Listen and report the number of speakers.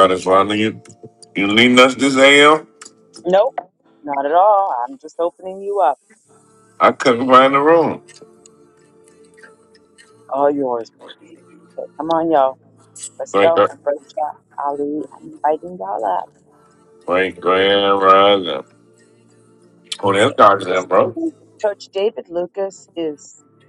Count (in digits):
2